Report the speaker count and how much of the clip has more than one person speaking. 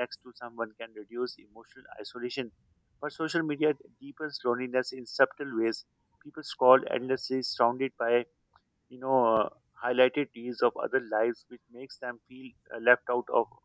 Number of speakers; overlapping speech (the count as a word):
one, no overlap